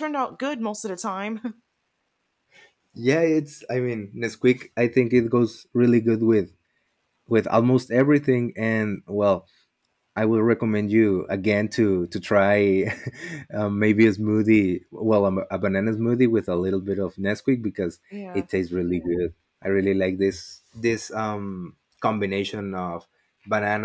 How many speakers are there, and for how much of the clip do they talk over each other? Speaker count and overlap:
2, about 1%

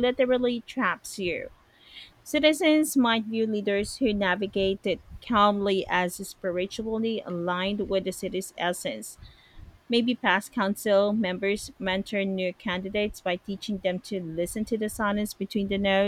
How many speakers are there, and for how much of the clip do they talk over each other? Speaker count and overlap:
1, no overlap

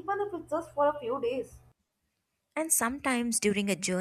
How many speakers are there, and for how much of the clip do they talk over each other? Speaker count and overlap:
2, no overlap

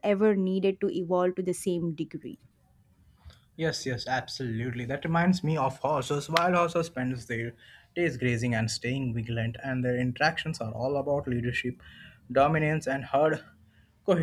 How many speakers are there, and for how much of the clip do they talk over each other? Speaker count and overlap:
2, no overlap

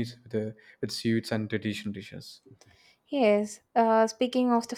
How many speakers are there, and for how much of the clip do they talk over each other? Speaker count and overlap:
2, no overlap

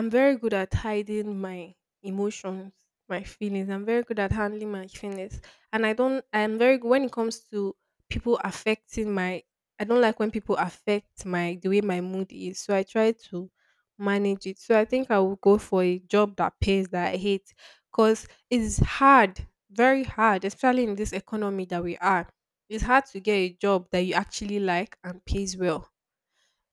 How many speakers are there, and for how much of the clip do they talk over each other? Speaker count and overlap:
1, no overlap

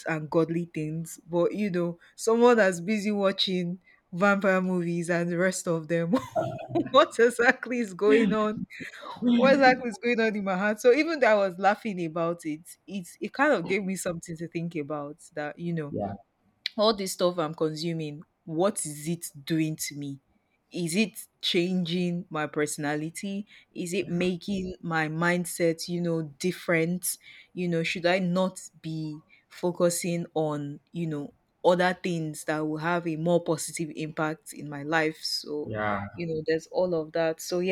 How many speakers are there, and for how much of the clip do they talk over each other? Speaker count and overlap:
2, about 1%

